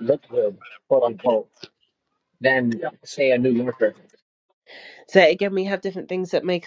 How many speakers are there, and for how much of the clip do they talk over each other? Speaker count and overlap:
2, no overlap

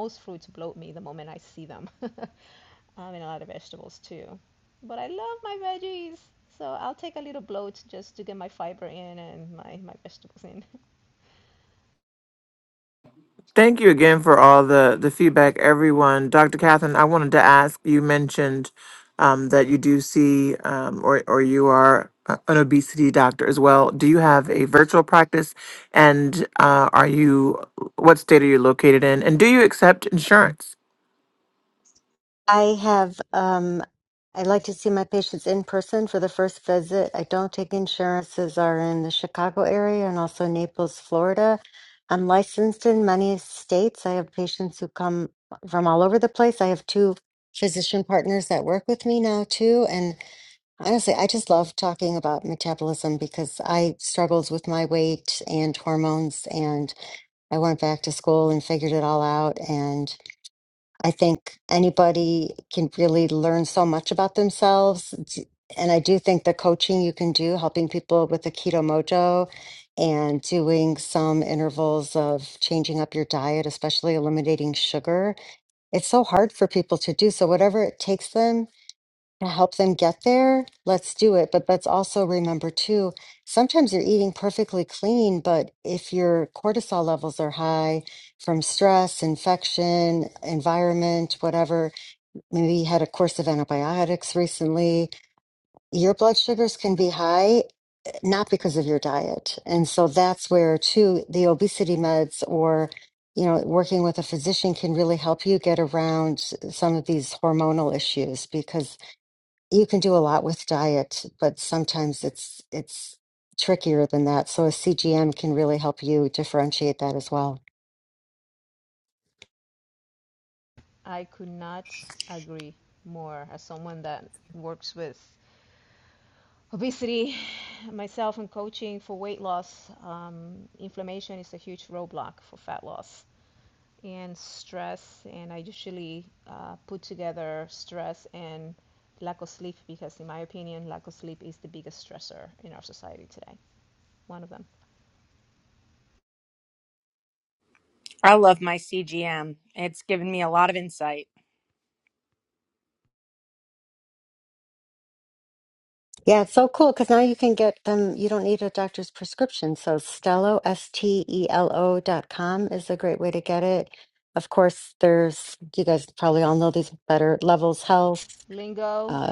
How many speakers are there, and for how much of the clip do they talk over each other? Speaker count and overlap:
4, under 1%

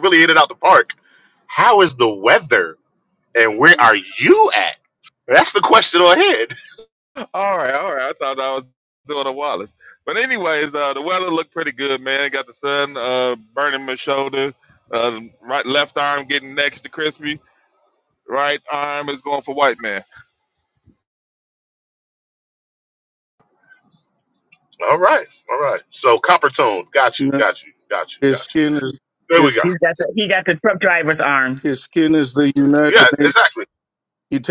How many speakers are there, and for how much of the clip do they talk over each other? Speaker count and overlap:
4, about 4%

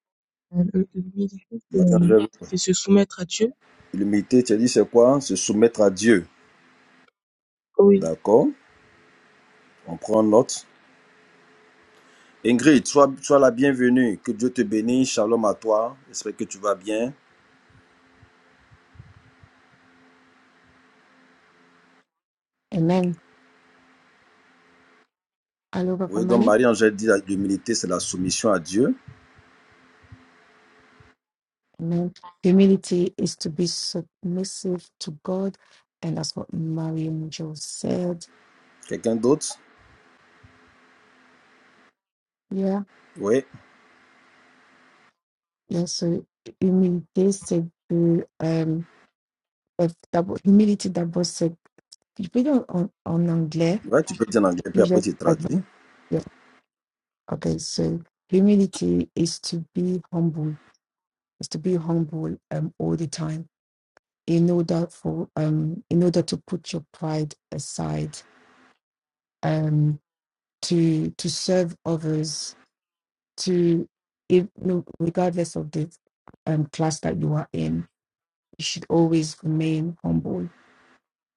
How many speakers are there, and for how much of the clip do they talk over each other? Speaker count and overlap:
3, about 2%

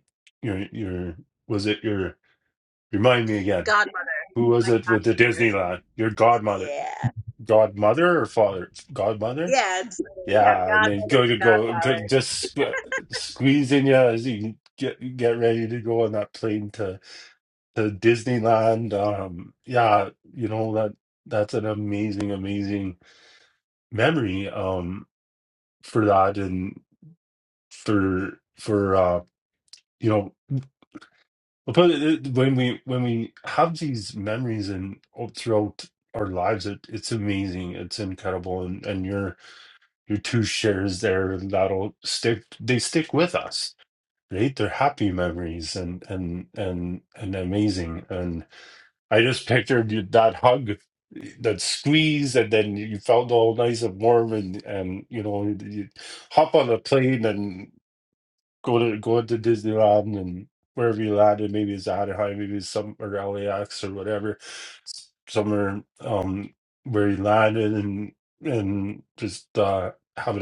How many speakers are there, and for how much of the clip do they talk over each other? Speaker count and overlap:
2, about 4%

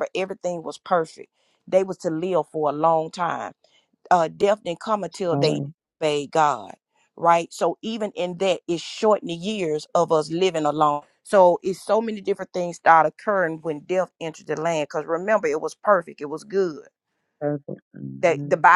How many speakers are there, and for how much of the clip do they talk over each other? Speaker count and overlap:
2, about 3%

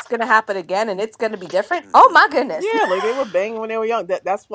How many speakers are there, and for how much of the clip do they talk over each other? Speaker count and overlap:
2, about 4%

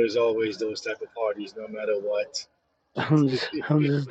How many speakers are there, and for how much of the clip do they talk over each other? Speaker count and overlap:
2, no overlap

